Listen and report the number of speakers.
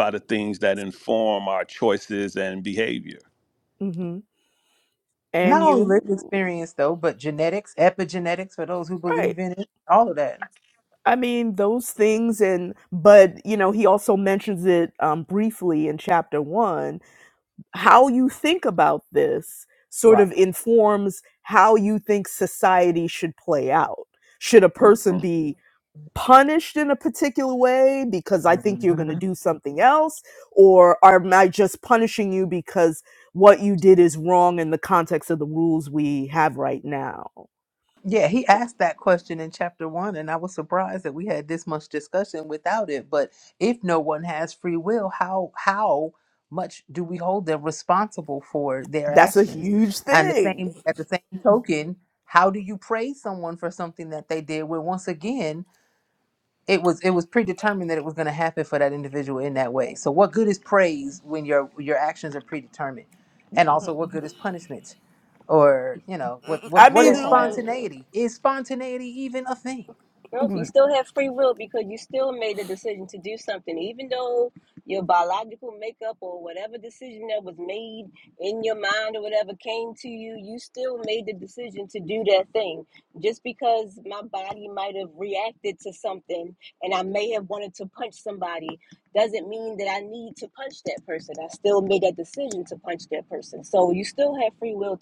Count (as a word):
four